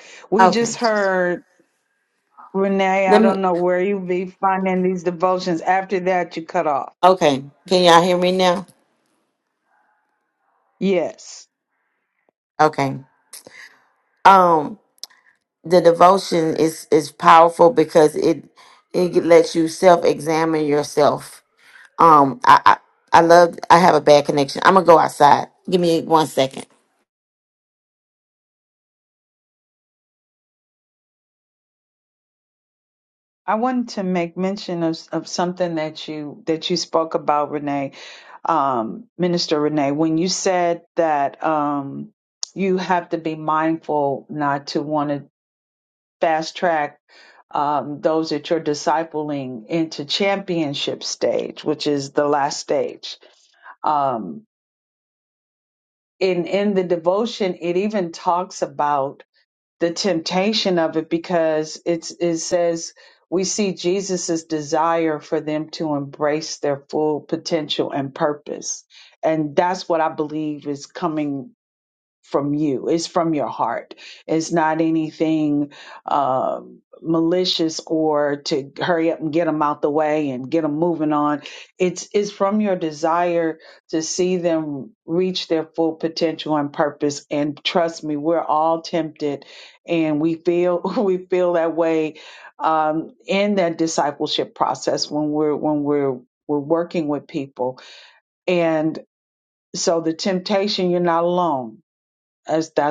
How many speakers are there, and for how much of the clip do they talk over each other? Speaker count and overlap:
two, about 1%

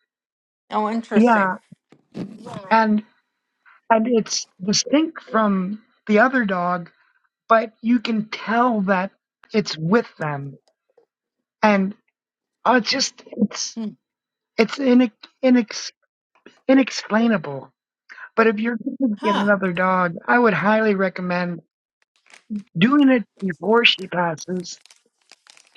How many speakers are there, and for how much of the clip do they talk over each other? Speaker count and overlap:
two, about 2%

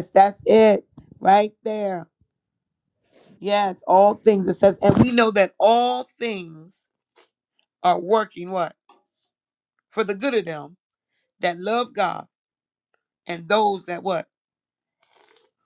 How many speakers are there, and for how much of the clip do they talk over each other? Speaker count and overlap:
one, no overlap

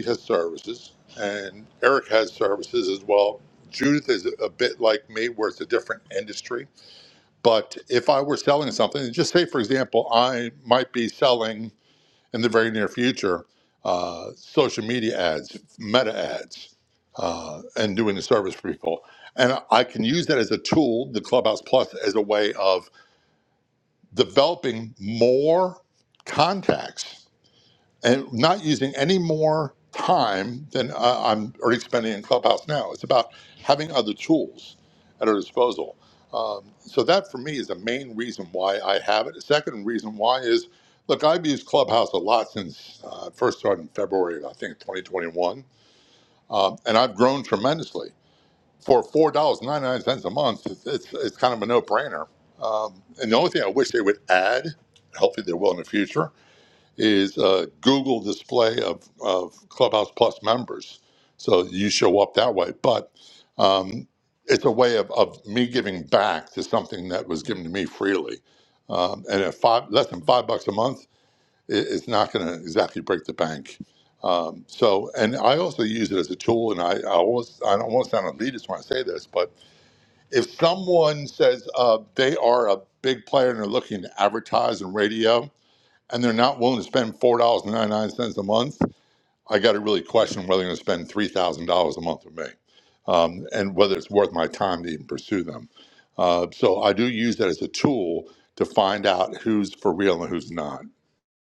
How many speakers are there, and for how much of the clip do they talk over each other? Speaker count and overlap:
one, no overlap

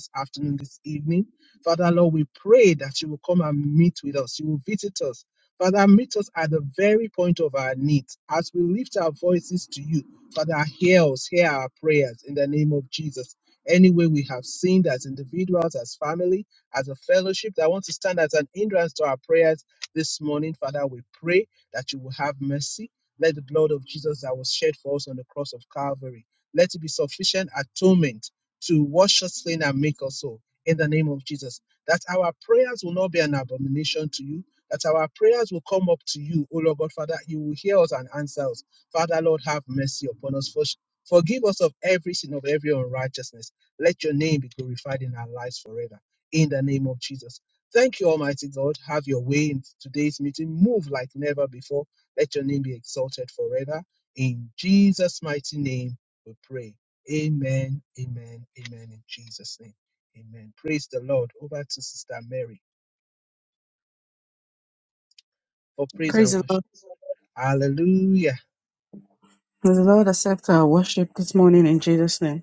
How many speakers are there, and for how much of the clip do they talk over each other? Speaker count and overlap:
two, about 1%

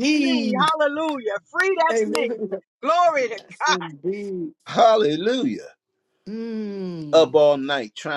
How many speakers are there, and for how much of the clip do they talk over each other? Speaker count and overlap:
three, about 23%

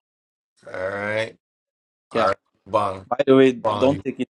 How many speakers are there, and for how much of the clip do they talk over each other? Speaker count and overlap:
two, about 13%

